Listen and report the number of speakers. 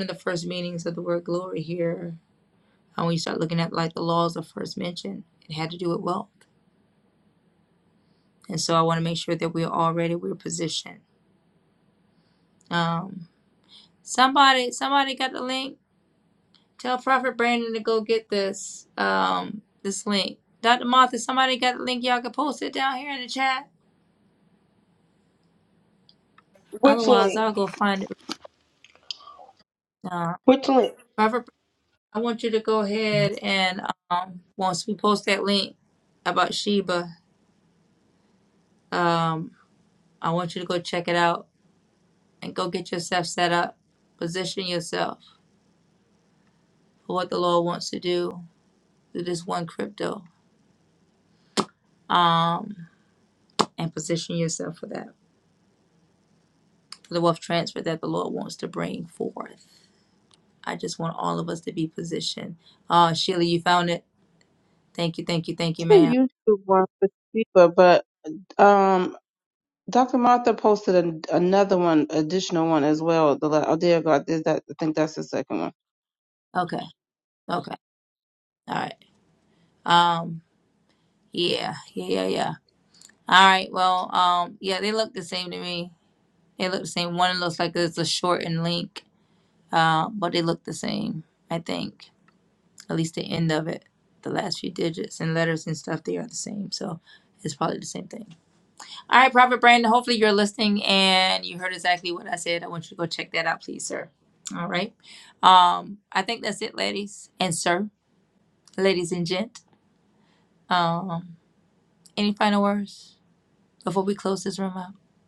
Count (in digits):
2